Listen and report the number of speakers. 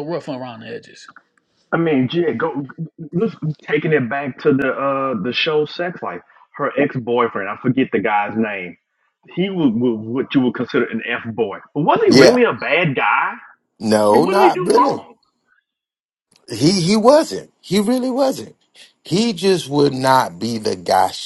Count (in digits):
3